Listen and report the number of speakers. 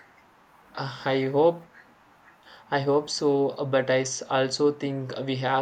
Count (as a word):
one